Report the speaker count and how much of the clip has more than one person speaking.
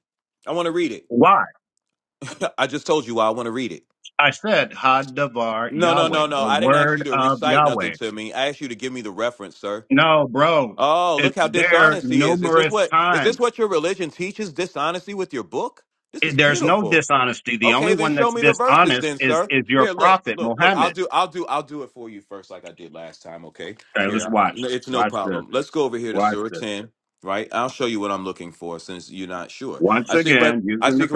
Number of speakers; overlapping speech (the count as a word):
two, about 38%